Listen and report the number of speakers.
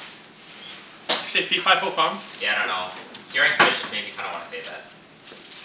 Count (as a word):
two